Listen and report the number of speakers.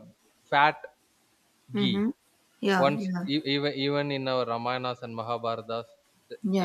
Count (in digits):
2